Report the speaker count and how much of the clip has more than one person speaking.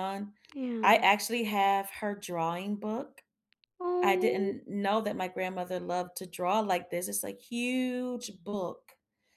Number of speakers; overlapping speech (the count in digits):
2, about 7%